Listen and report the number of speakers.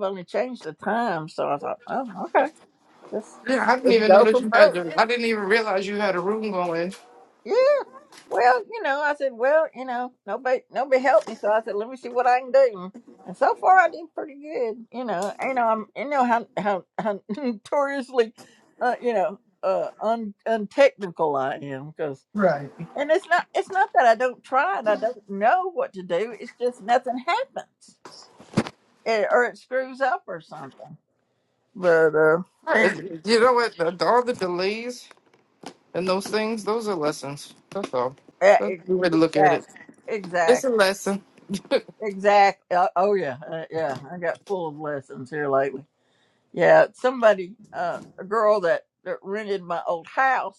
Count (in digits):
2